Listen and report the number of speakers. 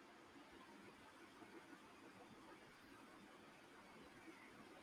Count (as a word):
zero